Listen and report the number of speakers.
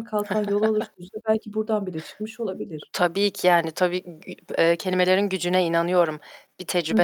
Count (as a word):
two